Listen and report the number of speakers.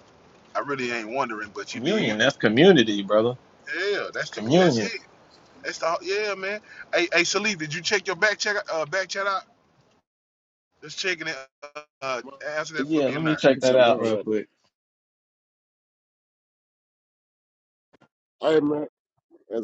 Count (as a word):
three